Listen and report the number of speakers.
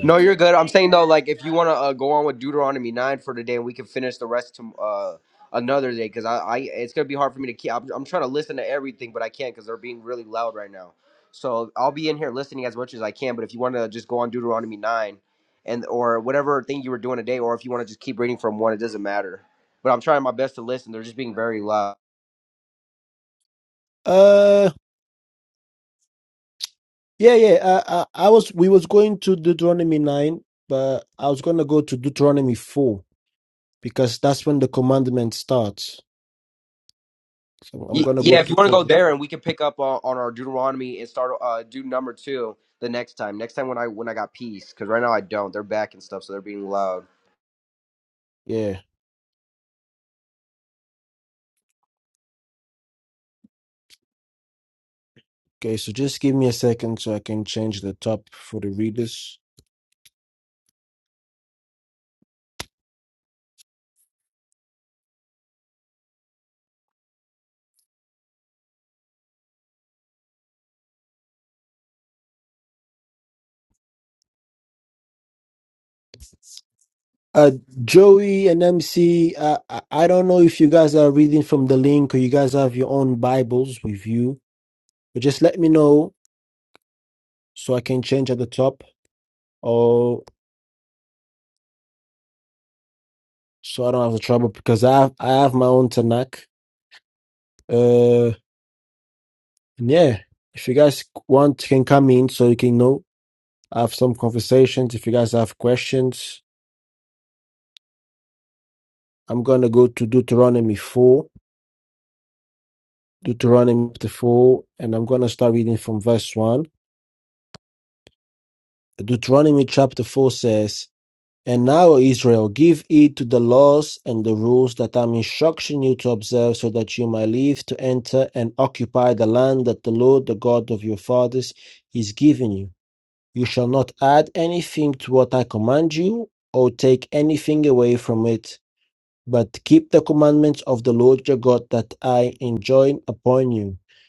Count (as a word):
two